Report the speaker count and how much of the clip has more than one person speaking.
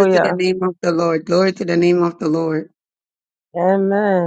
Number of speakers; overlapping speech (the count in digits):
2, about 9%